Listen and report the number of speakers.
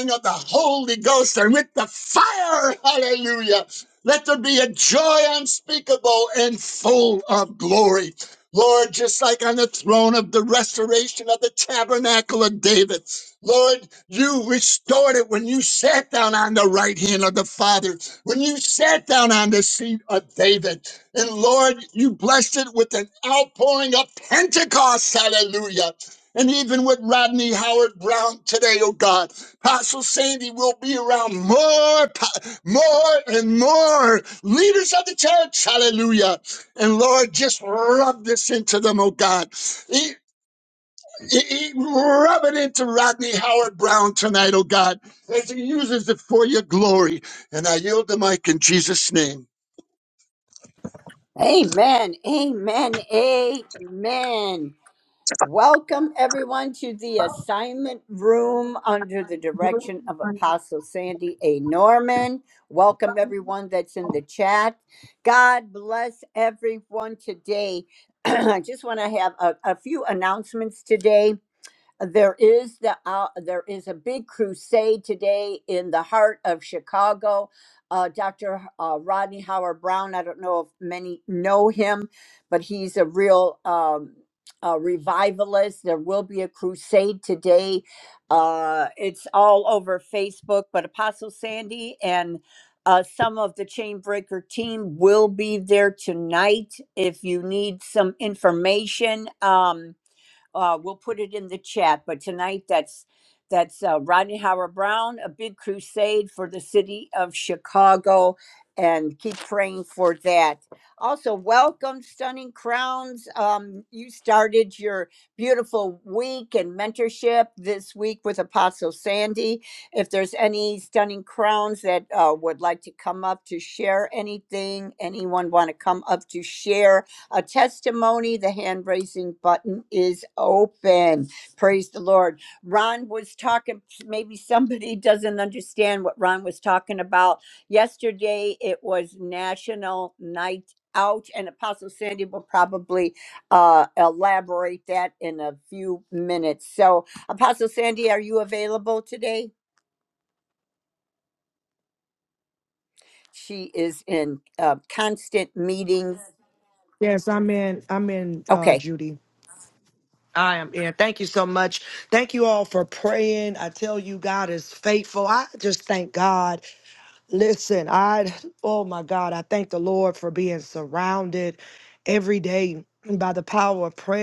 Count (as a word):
three